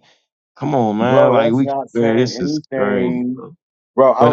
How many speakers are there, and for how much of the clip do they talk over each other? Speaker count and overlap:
2, about 46%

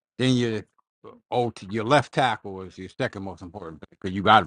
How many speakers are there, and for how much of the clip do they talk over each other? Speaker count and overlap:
1, no overlap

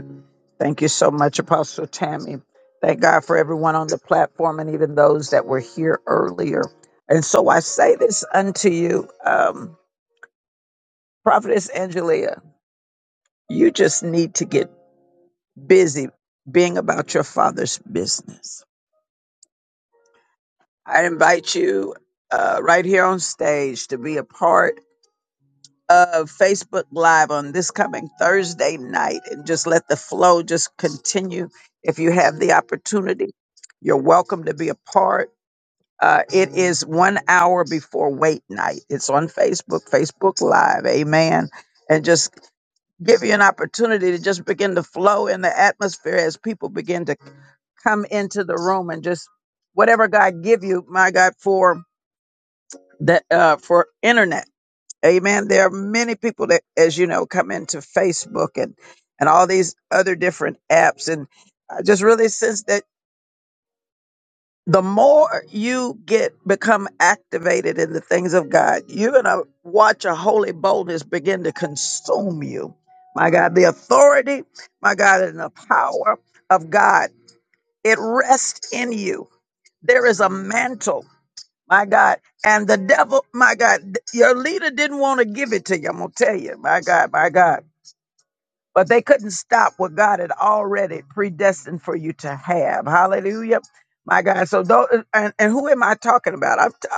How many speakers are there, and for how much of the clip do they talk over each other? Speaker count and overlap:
1, no overlap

